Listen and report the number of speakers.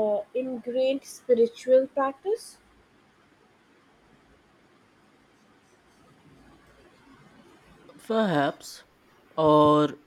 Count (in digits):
2